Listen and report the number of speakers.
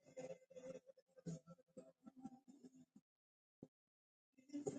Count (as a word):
zero